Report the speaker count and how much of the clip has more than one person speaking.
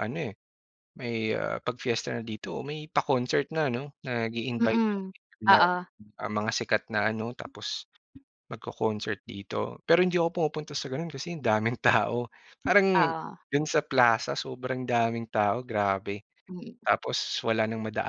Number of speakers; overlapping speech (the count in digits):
2, about 3%